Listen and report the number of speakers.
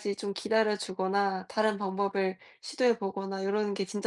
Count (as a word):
one